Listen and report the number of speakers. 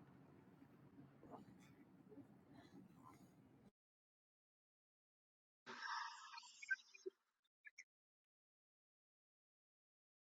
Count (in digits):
0